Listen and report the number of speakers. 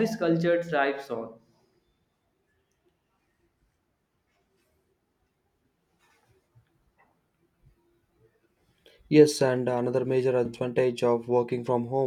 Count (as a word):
two